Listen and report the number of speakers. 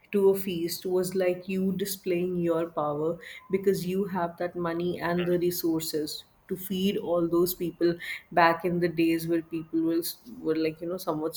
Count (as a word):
one